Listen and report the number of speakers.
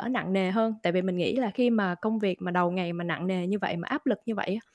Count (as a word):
one